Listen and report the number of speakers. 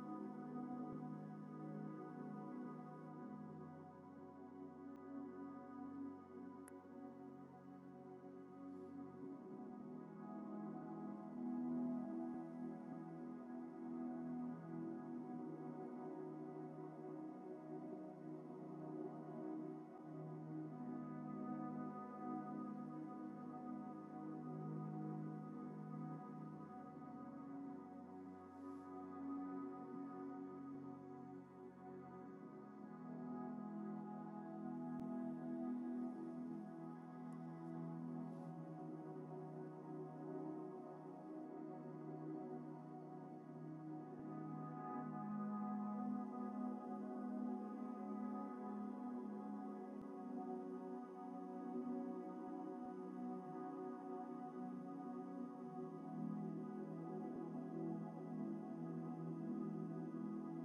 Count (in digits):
0